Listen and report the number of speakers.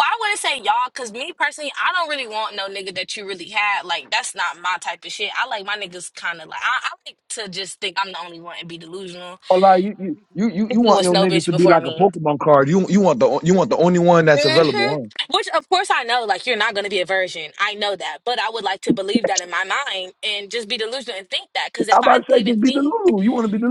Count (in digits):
2